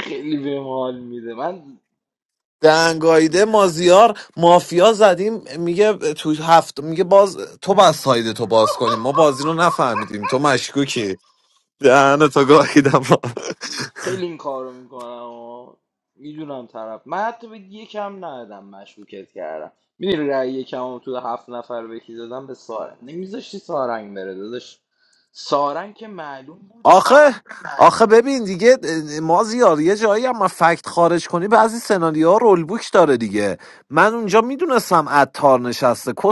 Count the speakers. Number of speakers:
2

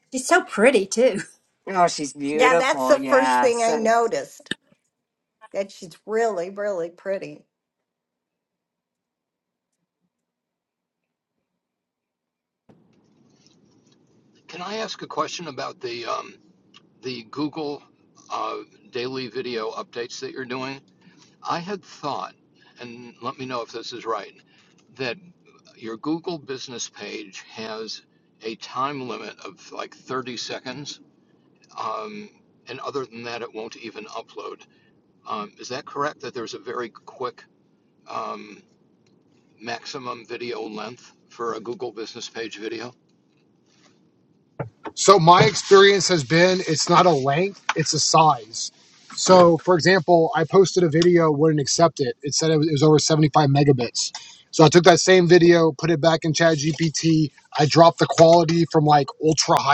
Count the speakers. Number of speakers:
5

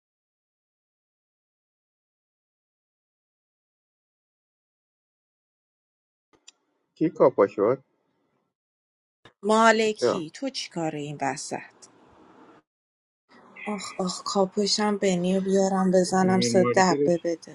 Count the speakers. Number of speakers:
2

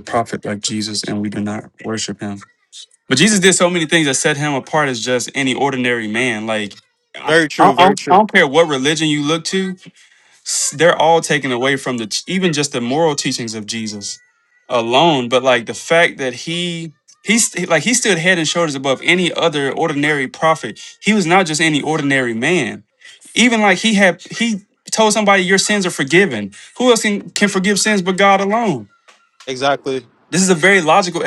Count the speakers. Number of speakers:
2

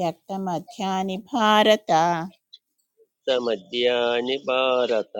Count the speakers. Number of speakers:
2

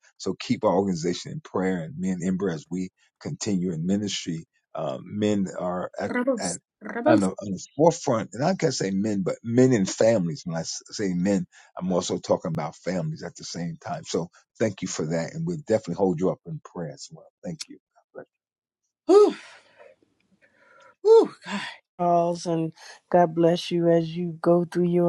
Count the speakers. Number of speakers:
3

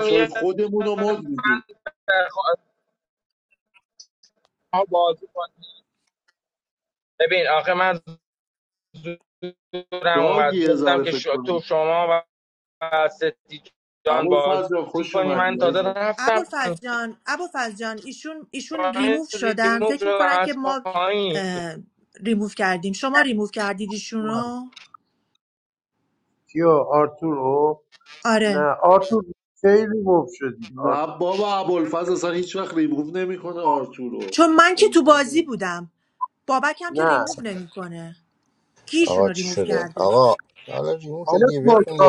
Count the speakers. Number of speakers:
5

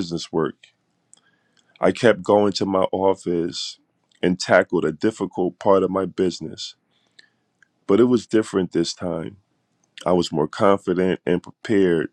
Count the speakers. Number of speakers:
1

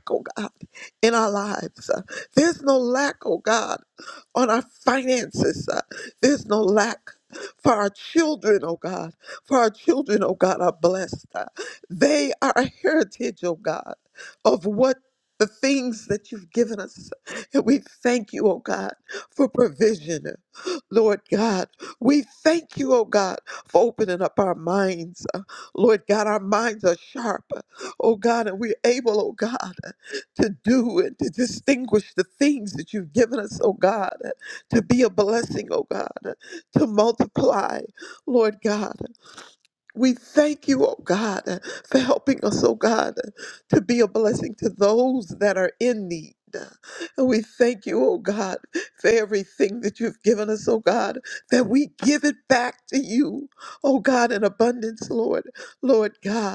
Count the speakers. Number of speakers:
1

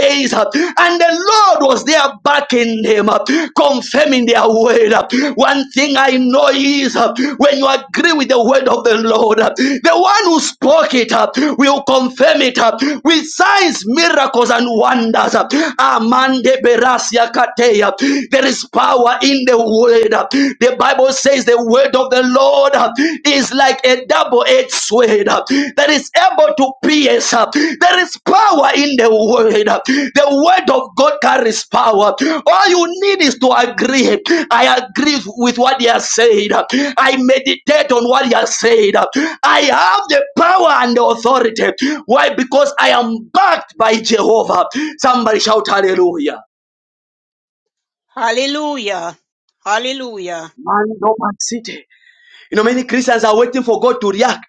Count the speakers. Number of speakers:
2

